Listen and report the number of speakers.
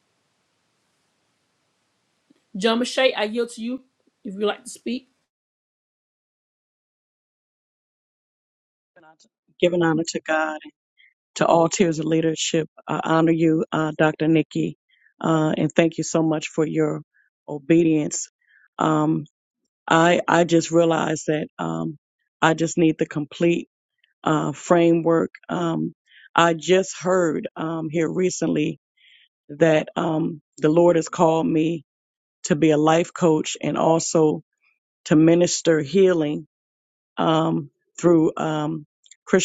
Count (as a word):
two